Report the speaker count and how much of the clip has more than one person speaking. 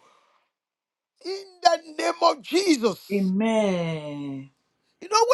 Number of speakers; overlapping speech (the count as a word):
two, no overlap